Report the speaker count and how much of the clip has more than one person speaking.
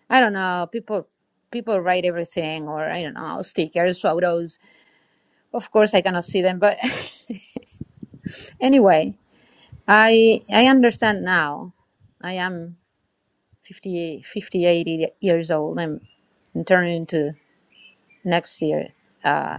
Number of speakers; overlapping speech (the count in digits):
1, no overlap